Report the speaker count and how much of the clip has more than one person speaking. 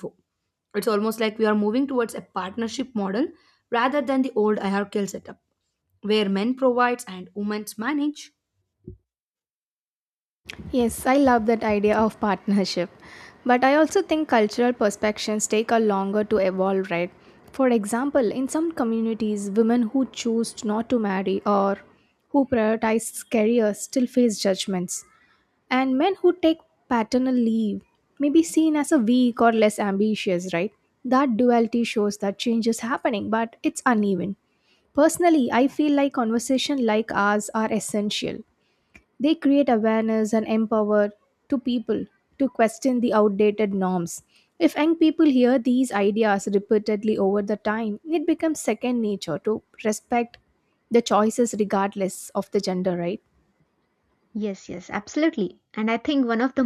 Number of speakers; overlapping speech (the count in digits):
3, no overlap